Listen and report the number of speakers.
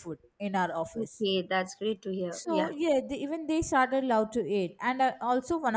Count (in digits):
2